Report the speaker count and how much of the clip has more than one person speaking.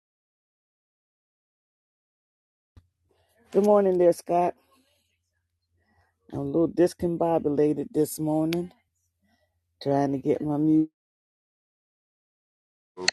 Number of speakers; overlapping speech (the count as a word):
one, no overlap